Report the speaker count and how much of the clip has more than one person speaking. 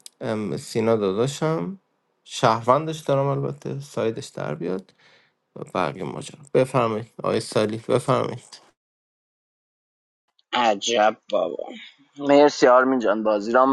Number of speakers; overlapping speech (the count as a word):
two, no overlap